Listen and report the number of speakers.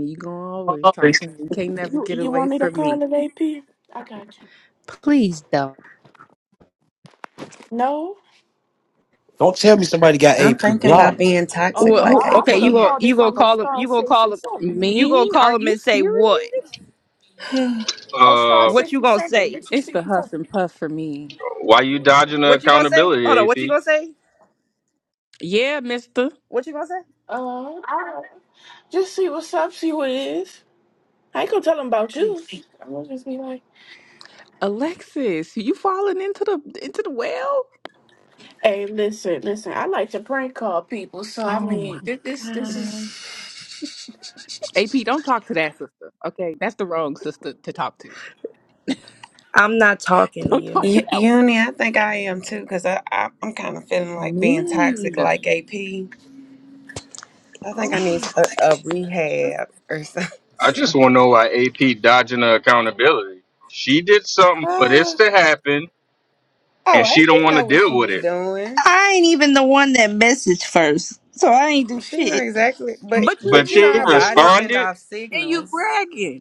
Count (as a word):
six